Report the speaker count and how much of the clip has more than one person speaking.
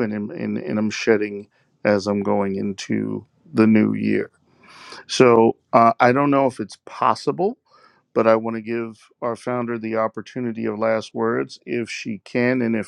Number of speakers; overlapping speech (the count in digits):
1, no overlap